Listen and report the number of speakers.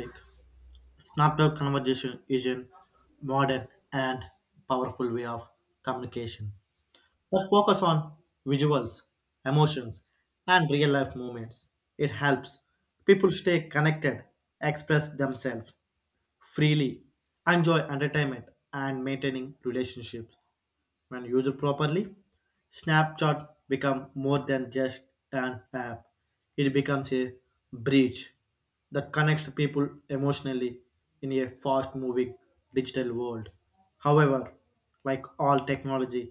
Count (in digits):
1